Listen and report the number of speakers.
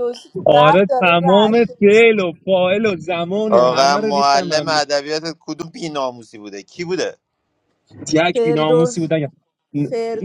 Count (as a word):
three